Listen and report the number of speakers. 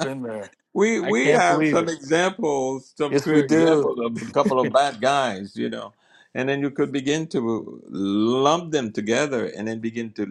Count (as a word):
two